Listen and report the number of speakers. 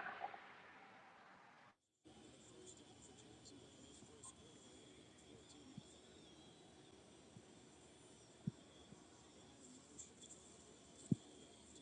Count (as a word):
zero